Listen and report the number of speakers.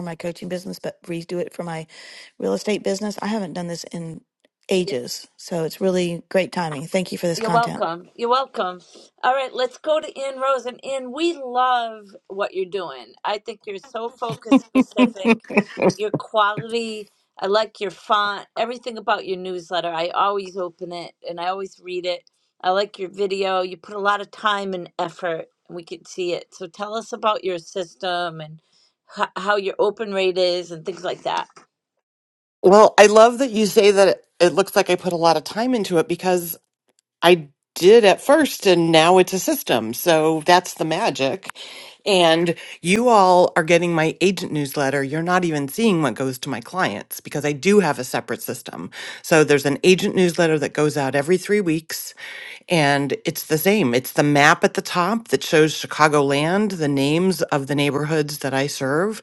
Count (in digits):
3